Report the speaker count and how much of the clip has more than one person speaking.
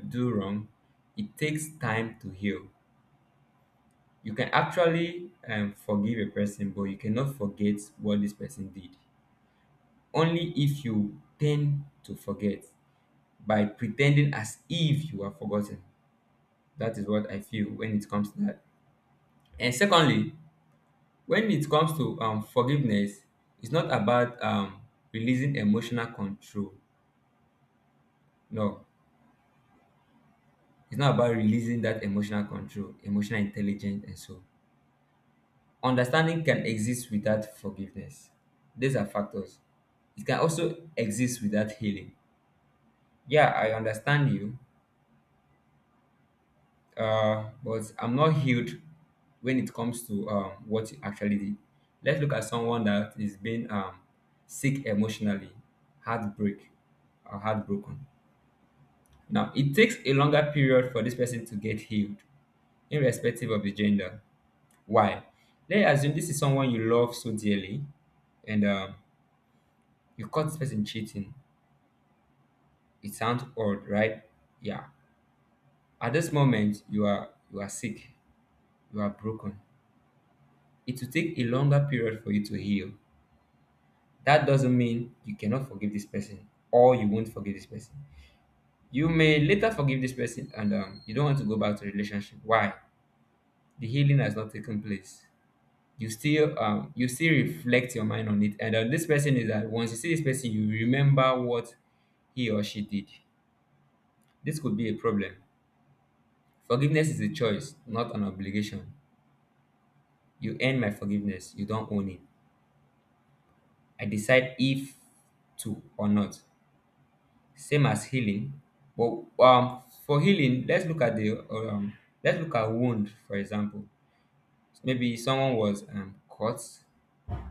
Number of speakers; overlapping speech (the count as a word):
one, no overlap